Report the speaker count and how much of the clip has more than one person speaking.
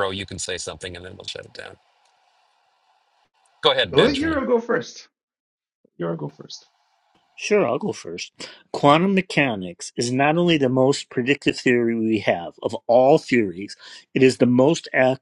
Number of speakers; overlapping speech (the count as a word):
three, about 3%